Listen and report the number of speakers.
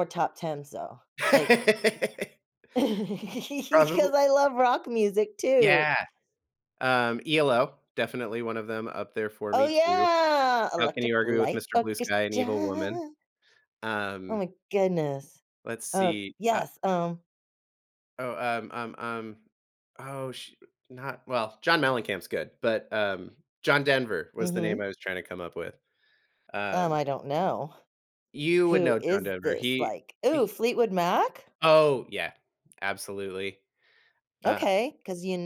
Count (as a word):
two